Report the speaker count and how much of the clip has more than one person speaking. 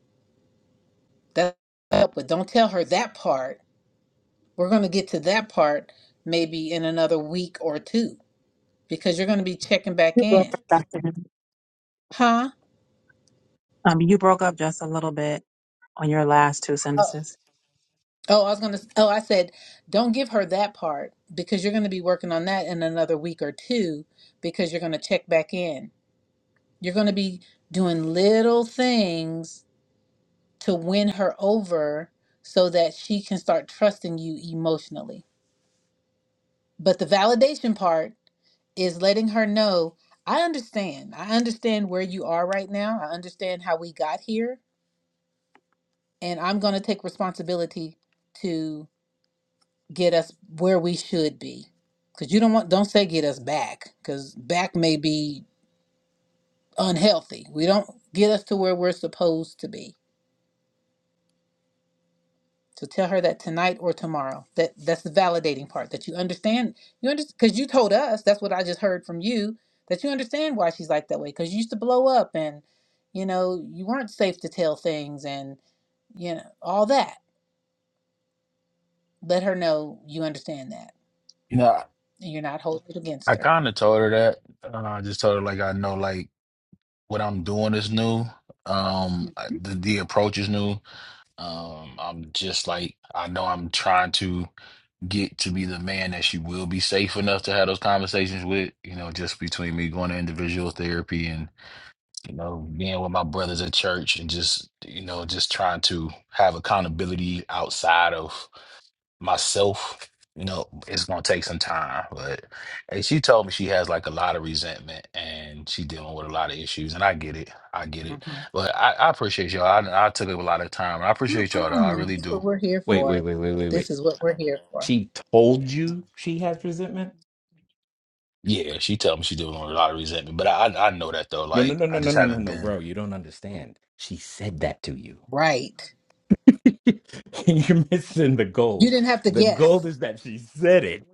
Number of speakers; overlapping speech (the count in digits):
4, about 3%